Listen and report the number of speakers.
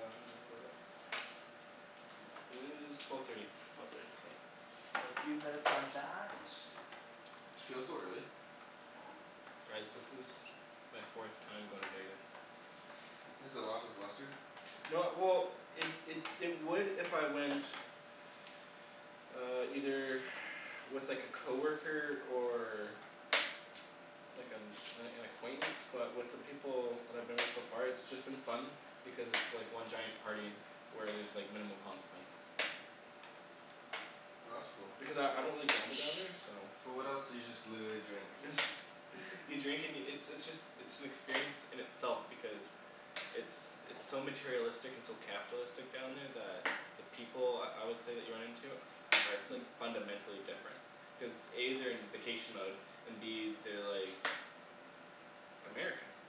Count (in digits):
3